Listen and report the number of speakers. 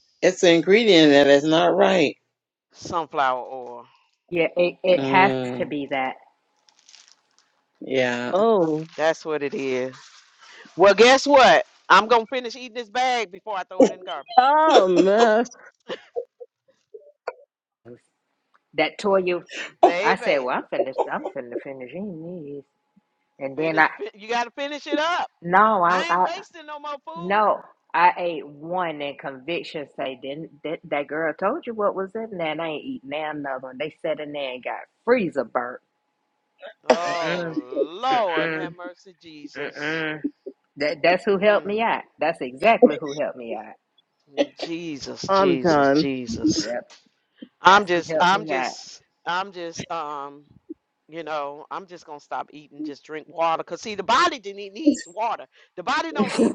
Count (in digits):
4